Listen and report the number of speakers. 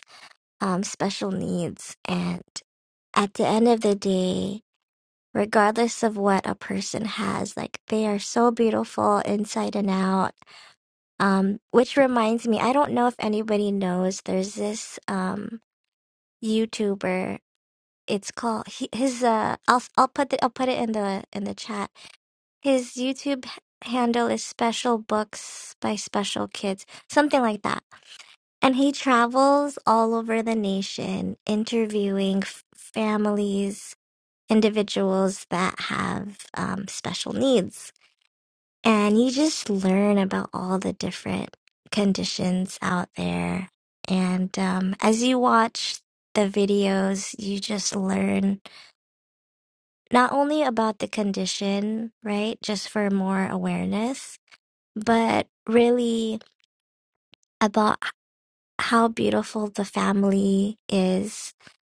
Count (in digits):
1